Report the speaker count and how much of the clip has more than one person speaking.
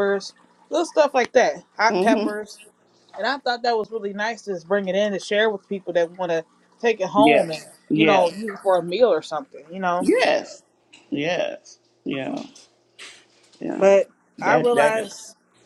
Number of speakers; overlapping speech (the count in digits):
2, about 13%